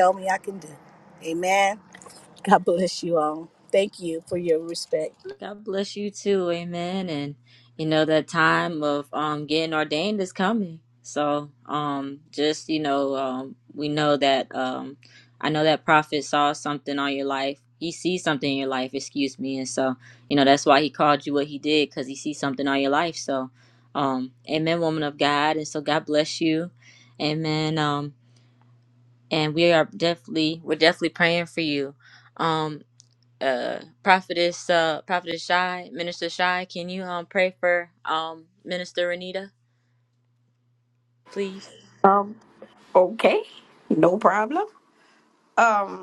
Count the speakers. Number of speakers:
three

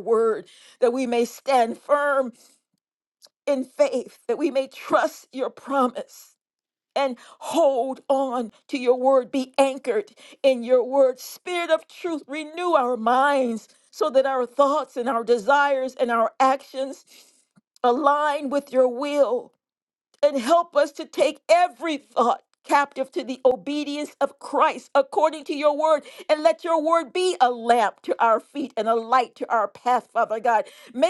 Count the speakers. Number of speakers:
one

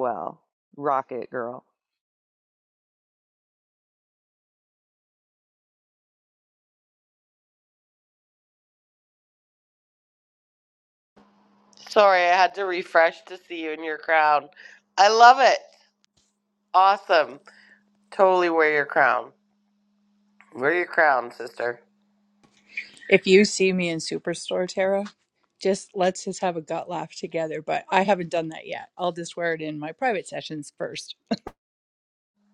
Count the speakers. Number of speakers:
three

